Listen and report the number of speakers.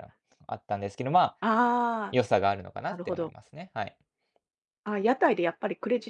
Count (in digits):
2